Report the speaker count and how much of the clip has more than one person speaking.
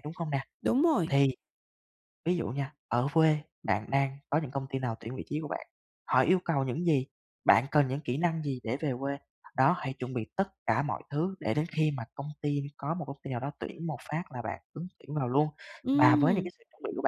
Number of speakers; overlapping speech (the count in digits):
2, about 3%